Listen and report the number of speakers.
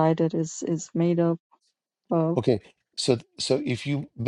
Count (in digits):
2